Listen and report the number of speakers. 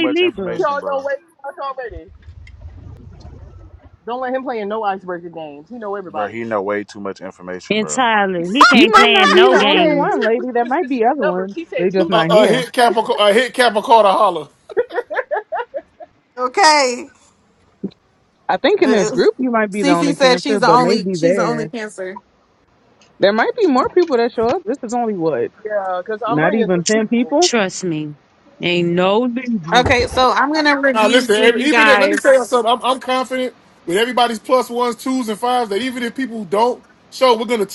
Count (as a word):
six